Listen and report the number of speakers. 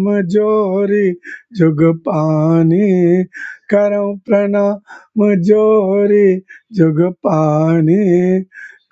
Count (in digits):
1